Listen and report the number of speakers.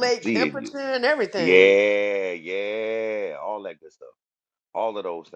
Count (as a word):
two